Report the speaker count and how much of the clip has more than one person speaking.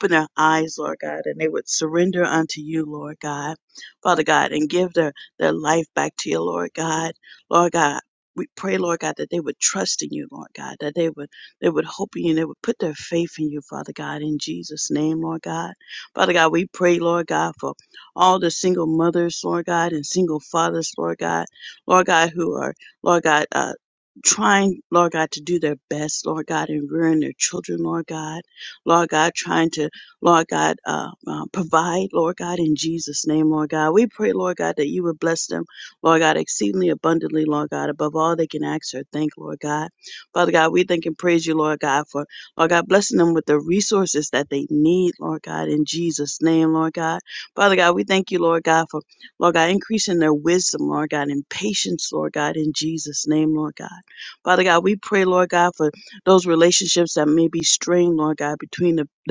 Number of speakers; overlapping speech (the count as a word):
one, no overlap